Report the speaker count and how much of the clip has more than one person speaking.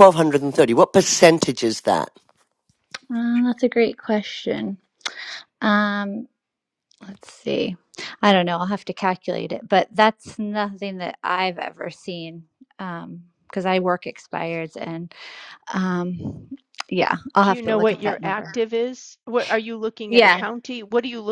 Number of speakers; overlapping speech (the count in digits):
3, about 7%